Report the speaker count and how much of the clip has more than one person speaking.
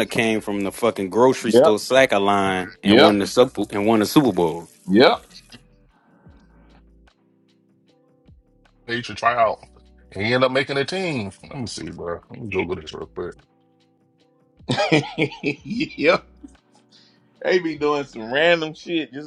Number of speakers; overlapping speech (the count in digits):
3, about 3%